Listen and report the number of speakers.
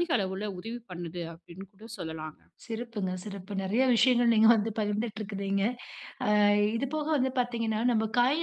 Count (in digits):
2